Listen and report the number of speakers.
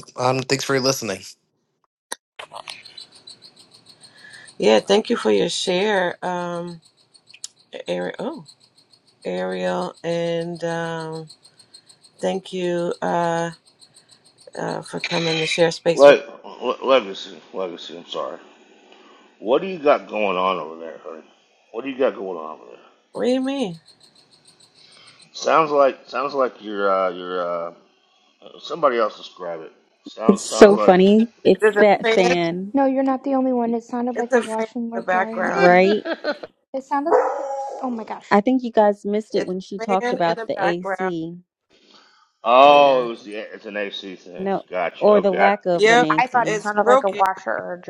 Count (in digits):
5